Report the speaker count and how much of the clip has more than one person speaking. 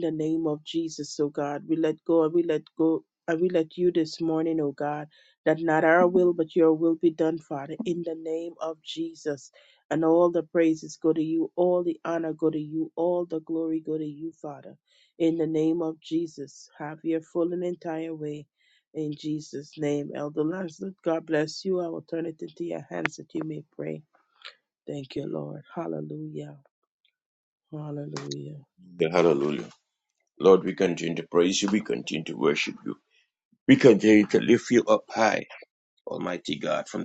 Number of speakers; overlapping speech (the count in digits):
2, no overlap